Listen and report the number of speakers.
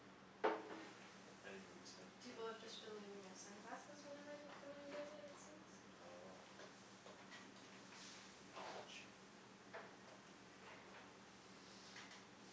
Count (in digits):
2